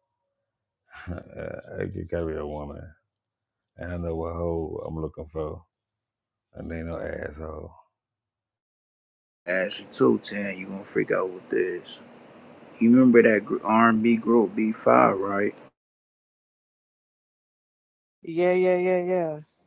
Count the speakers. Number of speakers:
3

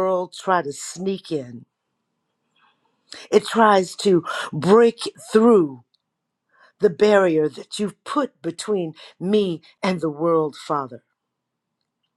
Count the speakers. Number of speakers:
1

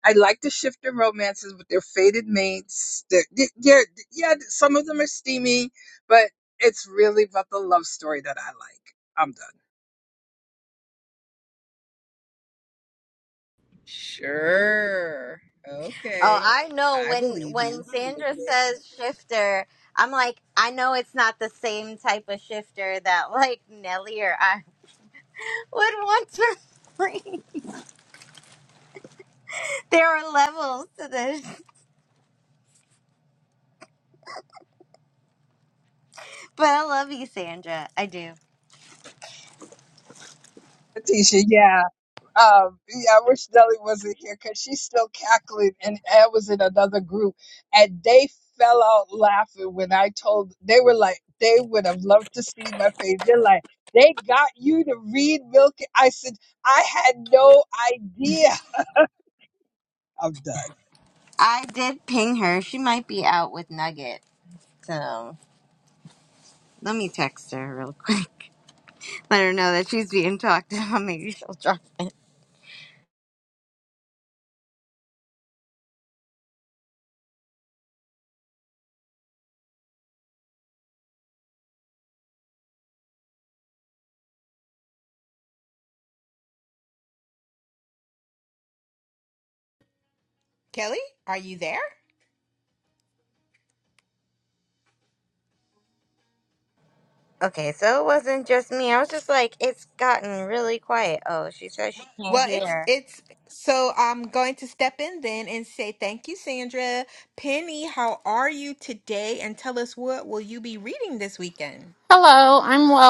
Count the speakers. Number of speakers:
5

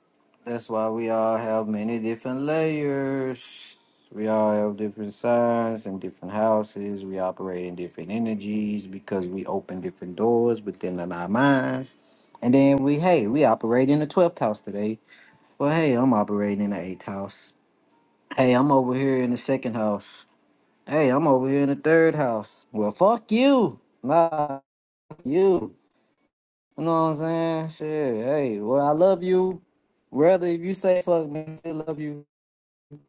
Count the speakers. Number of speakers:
1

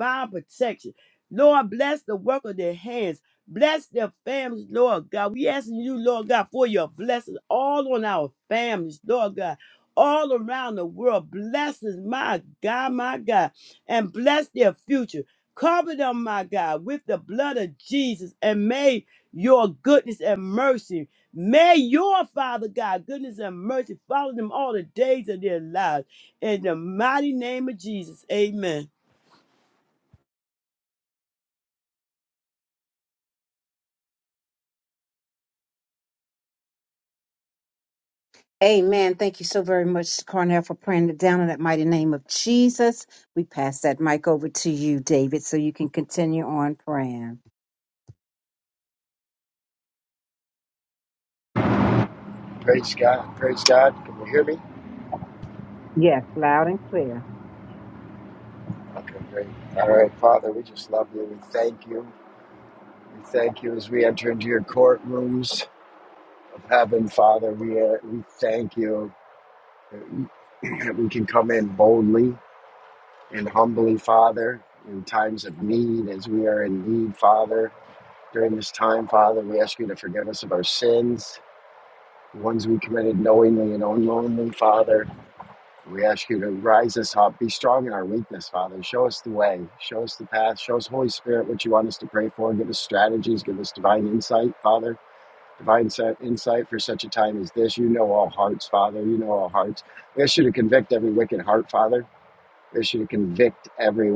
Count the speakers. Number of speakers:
3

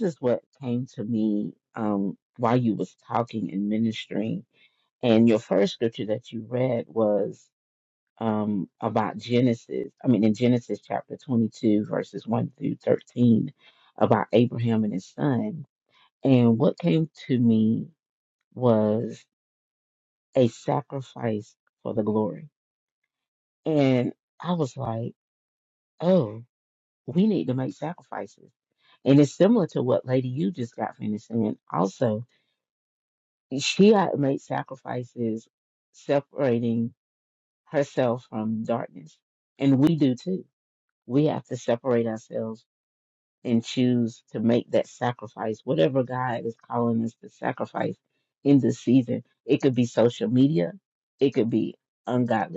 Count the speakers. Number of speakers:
1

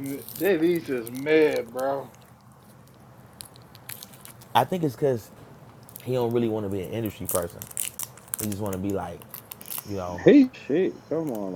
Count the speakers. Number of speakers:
3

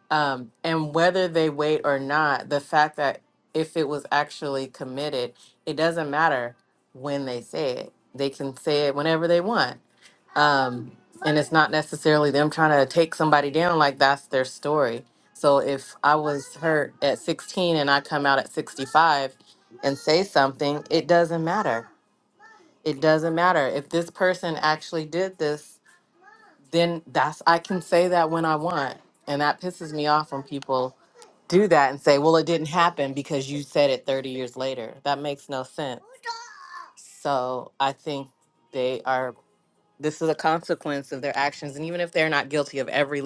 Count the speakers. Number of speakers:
1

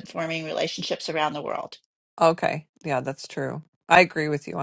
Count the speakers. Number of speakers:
2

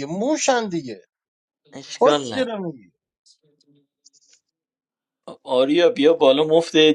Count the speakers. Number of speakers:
2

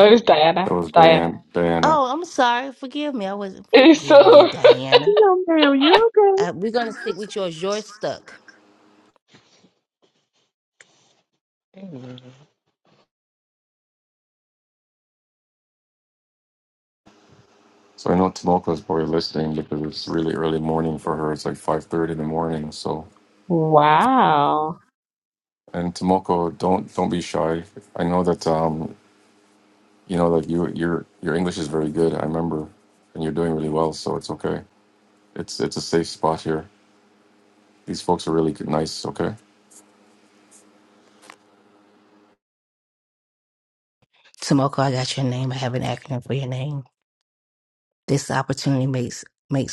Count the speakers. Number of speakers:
4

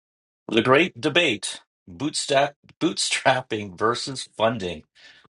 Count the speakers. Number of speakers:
1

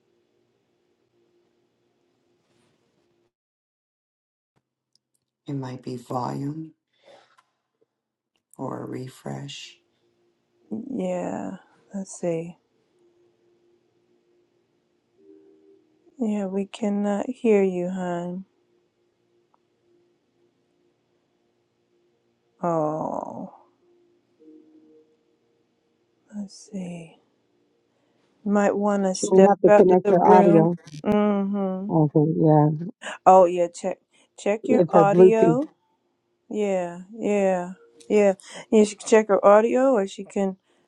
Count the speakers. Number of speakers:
3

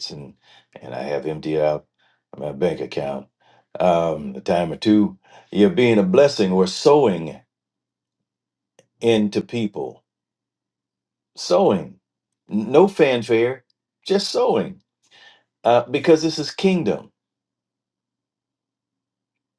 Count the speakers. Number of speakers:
1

